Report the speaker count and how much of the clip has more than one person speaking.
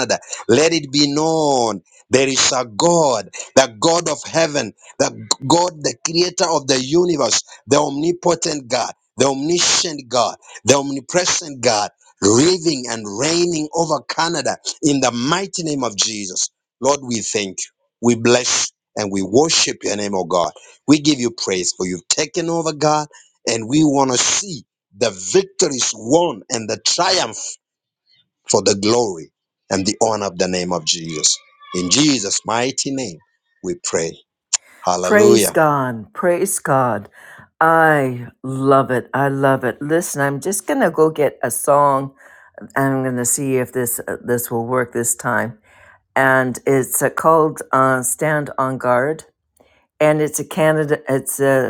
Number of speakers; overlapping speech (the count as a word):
two, about 1%